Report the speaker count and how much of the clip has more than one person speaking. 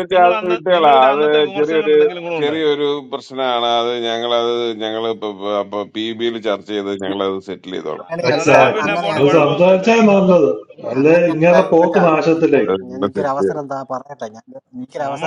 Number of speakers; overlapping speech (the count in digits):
4, about 43%